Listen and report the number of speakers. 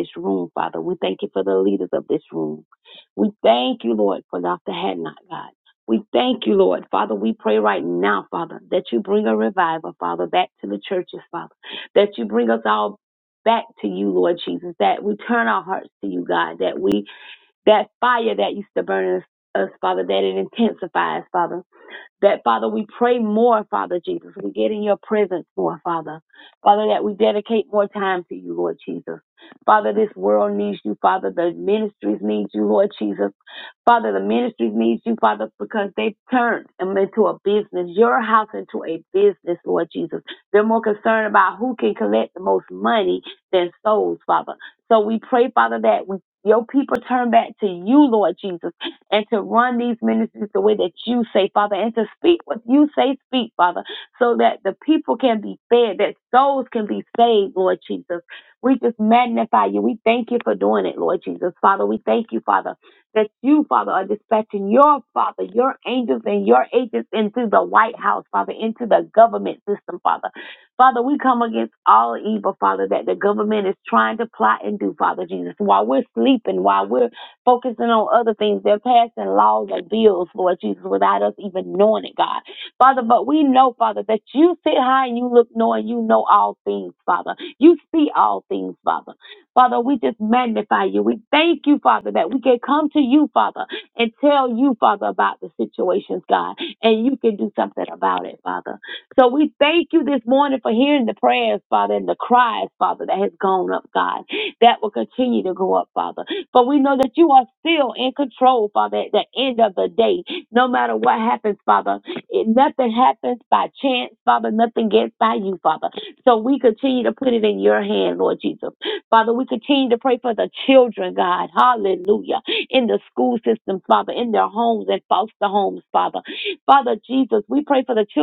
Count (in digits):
1